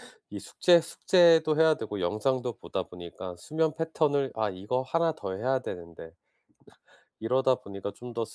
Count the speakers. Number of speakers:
one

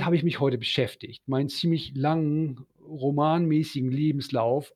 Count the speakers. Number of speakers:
one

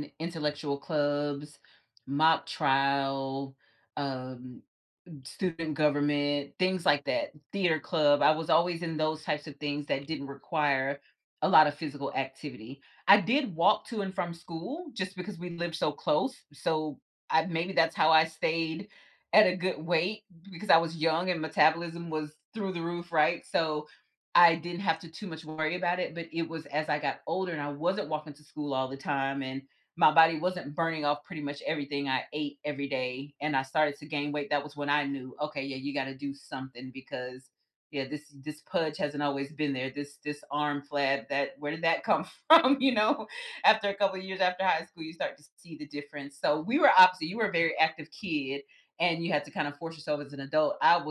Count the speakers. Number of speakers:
one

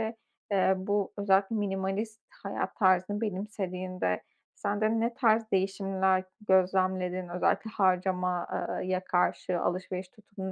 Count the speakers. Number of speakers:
one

